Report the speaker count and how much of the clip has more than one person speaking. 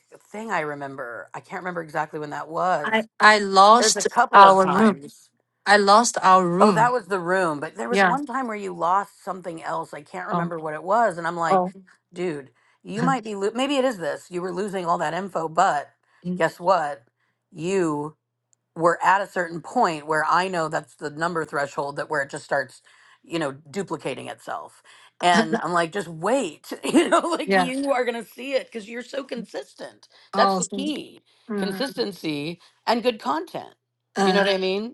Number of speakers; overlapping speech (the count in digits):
2, about 9%